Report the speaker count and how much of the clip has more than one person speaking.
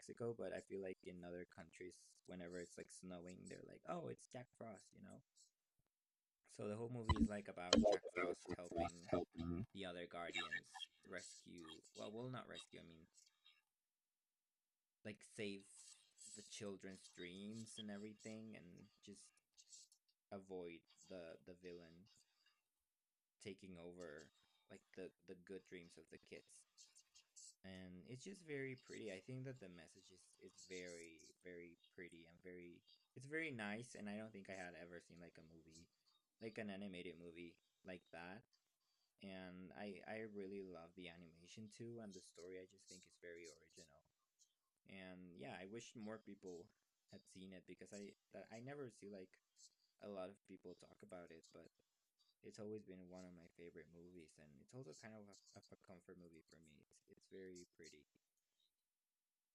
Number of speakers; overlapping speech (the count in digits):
1, no overlap